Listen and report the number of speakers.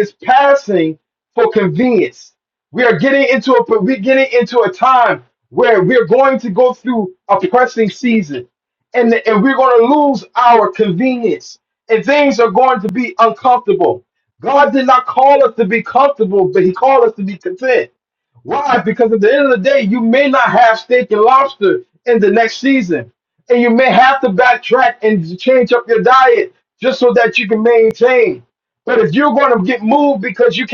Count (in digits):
1